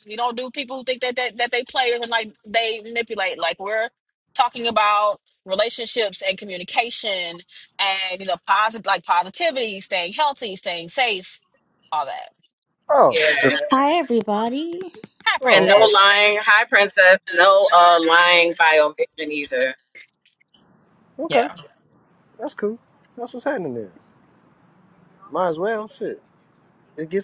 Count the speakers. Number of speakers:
four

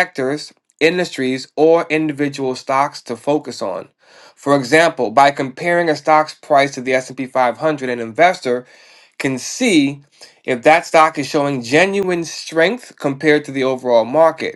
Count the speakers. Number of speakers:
one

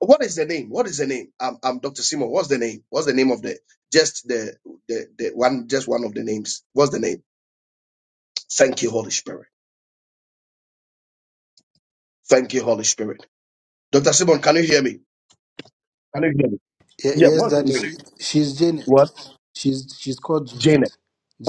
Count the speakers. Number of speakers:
two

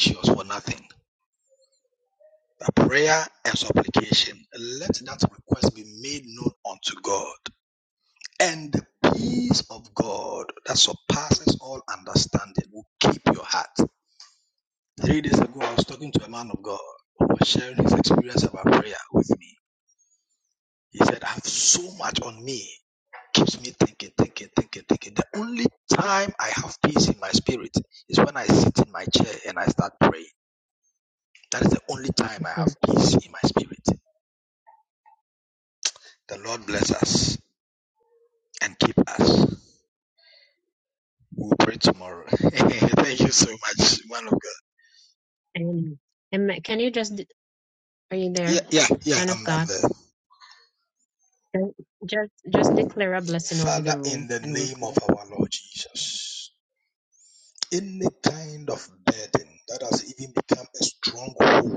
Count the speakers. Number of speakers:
two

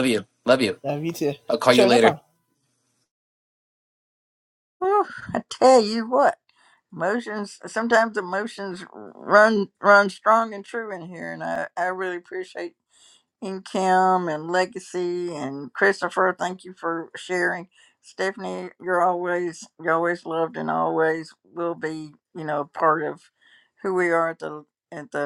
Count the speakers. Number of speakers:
three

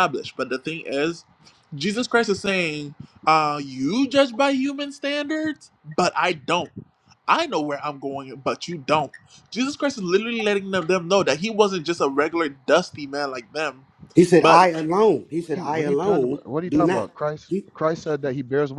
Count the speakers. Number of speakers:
three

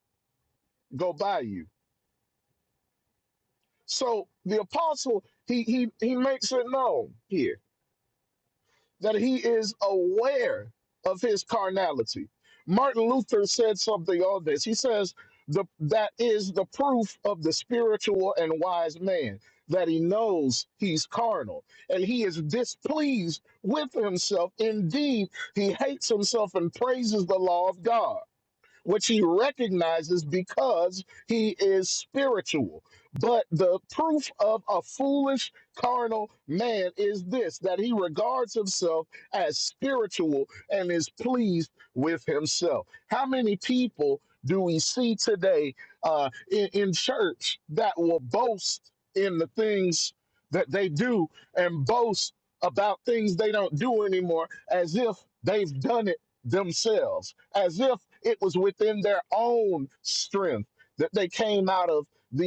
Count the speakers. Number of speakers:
one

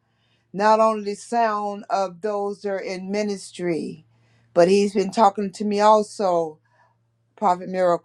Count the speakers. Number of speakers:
one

